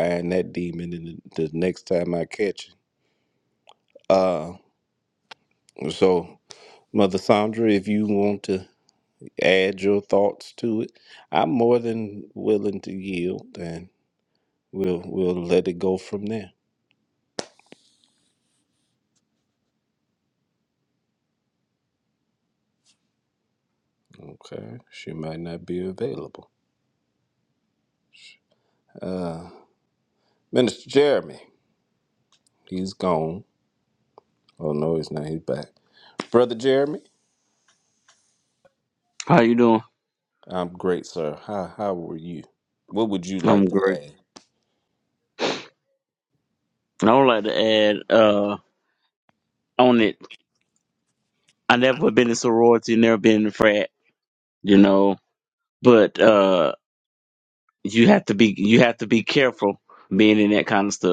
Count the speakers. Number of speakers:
two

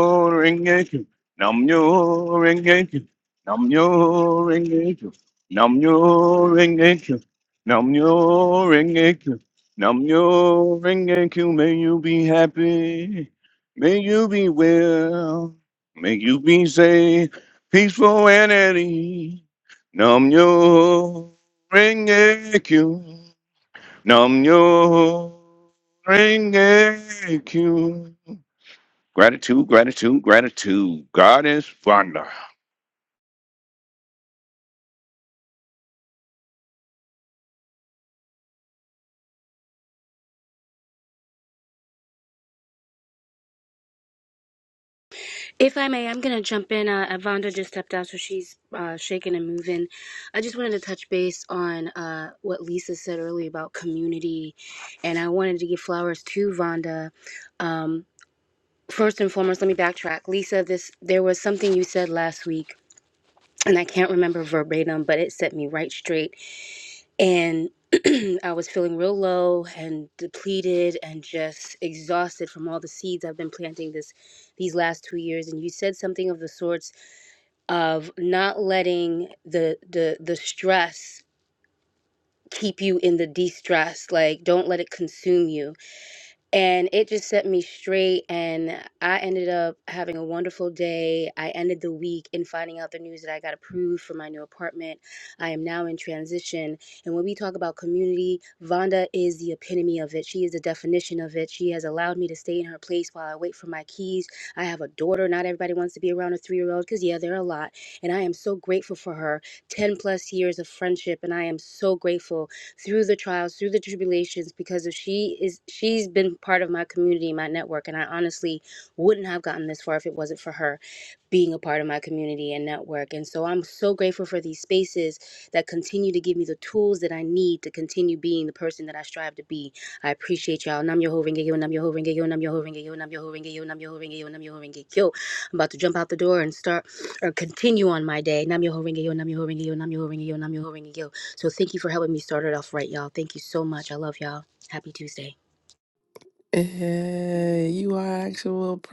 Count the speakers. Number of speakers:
three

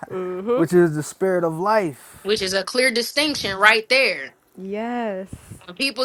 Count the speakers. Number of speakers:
three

